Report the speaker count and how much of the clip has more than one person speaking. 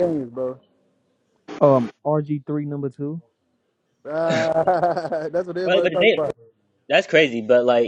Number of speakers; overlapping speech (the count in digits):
3, about 7%